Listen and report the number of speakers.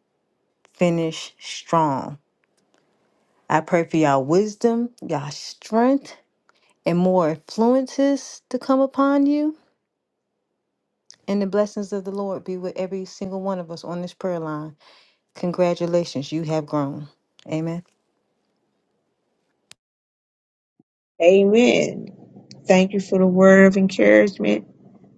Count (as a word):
two